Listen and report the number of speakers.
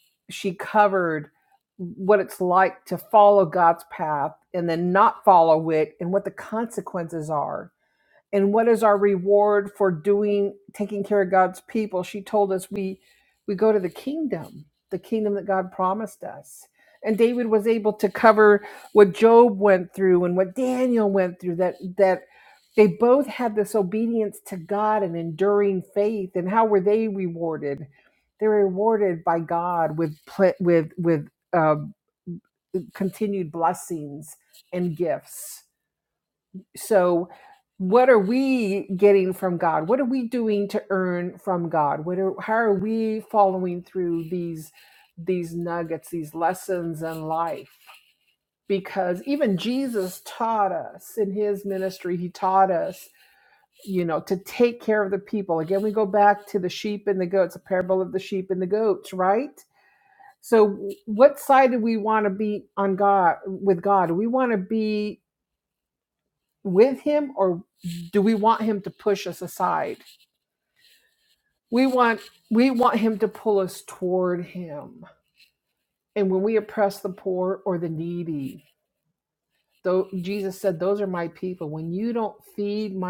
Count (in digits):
1